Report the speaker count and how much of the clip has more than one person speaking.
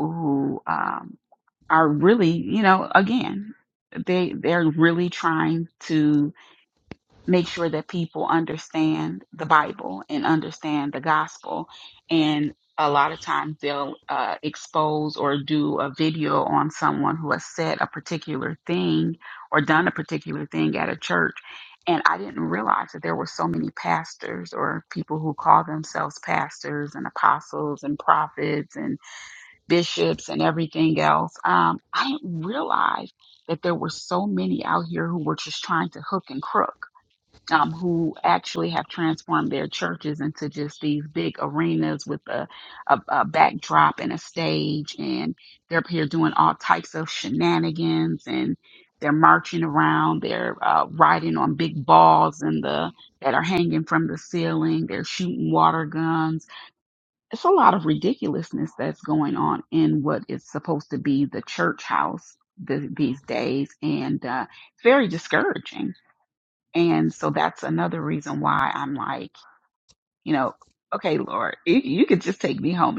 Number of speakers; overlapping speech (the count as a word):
one, no overlap